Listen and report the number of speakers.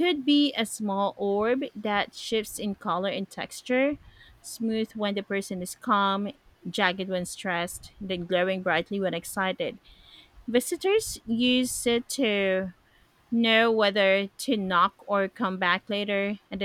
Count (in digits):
1